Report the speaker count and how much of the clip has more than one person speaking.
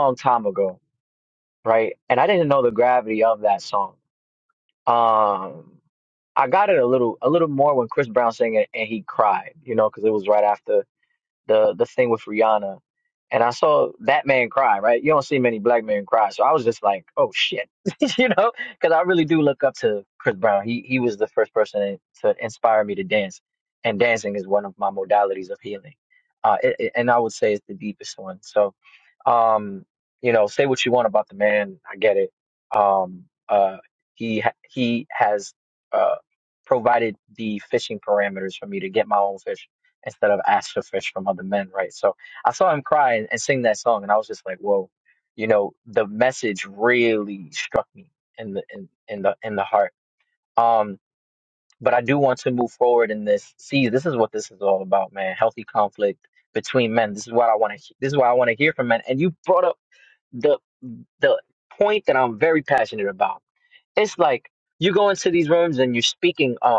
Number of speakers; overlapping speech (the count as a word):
one, no overlap